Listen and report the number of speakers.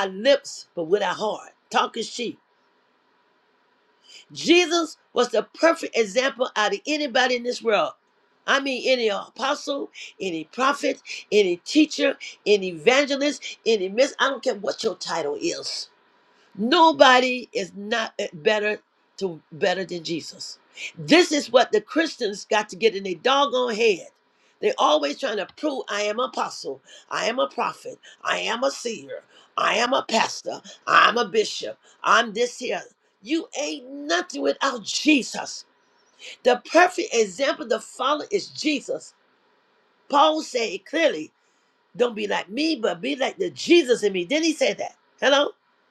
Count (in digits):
1